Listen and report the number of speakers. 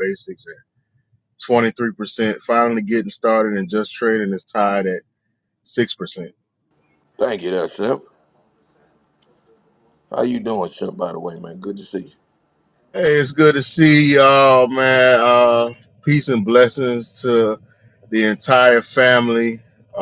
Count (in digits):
2